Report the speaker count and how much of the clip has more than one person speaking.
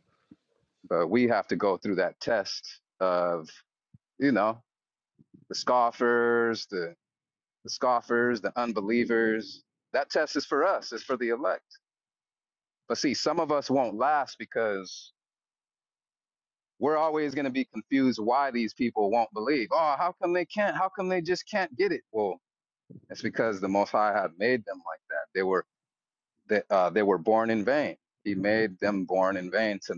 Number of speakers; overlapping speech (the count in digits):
1, no overlap